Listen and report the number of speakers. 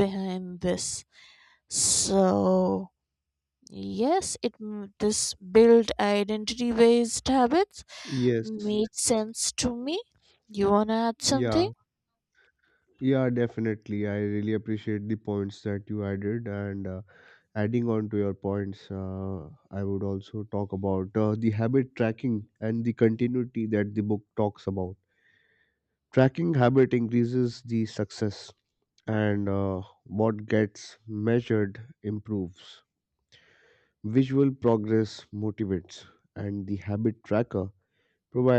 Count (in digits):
2